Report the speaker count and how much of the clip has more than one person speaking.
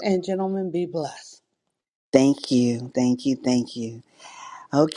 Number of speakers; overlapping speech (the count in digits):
2, no overlap